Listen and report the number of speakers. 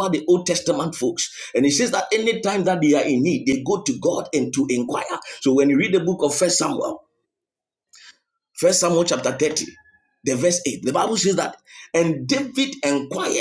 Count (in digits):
1